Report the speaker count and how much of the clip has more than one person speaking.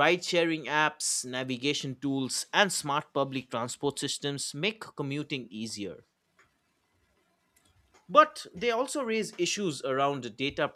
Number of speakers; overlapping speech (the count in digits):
1, no overlap